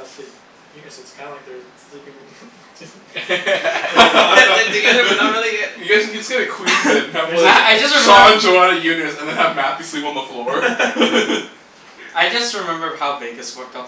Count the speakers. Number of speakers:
4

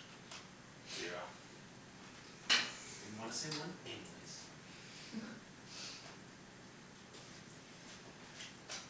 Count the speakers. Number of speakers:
1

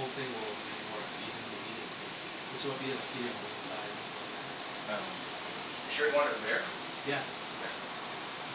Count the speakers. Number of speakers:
2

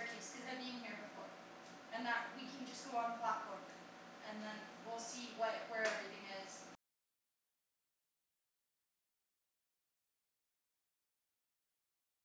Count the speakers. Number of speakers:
1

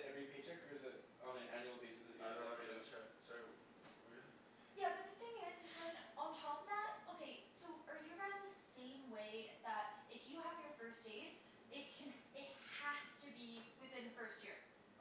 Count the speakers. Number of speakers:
3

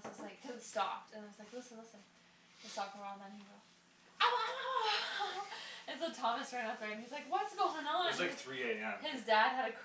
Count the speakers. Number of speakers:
2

